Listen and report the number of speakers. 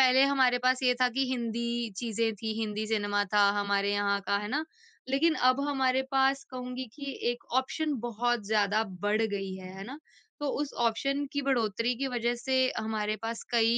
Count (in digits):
1